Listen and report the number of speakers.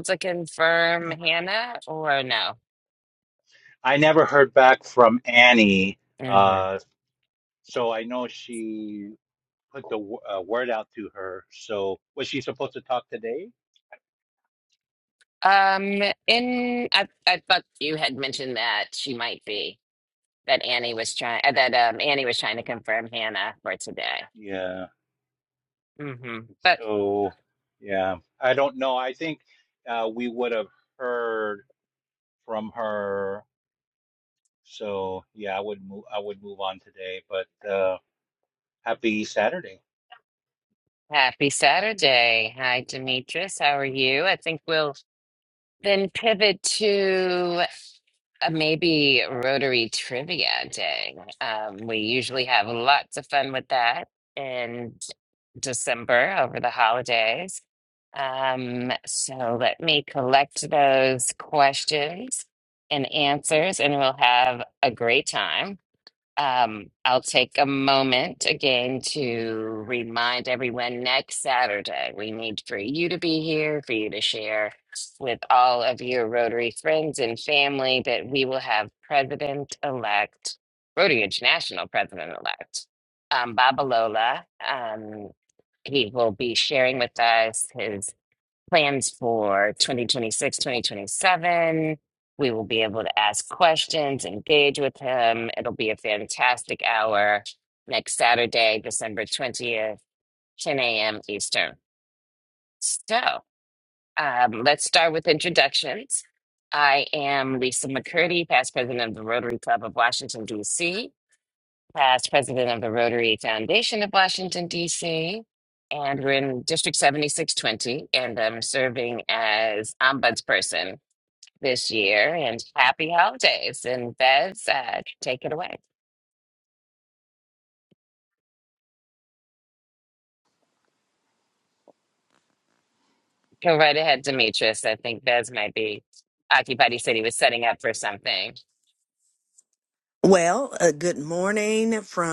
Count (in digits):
3